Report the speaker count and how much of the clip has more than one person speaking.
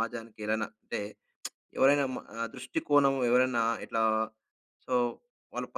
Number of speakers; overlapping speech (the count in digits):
1, no overlap